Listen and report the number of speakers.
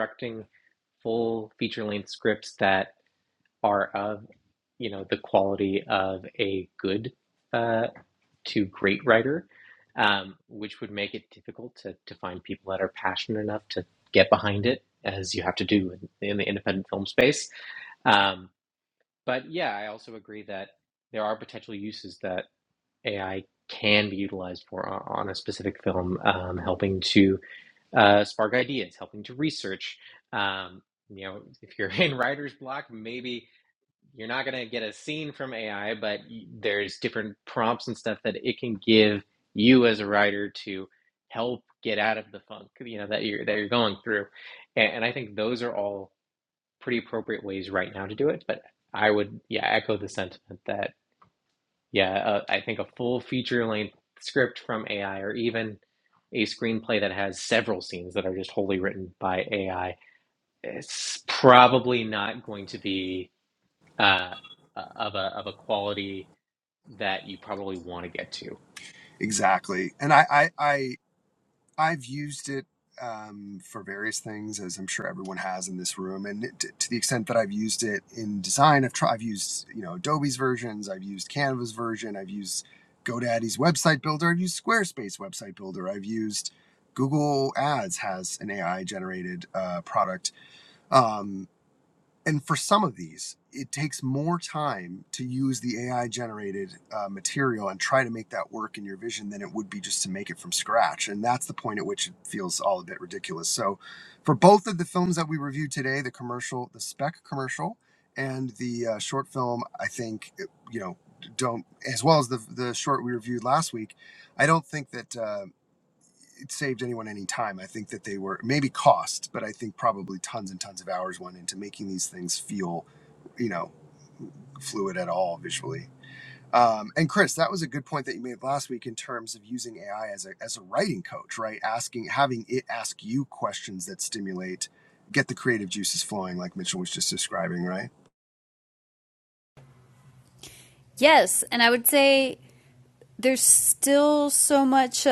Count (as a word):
three